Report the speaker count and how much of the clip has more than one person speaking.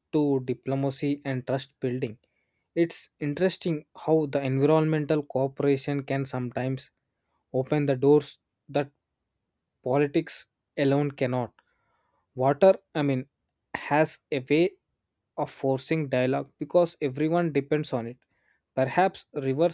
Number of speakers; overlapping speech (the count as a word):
one, no overlap